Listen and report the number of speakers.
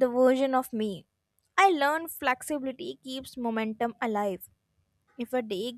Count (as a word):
one